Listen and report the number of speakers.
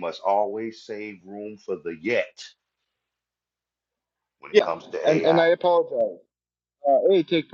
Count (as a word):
two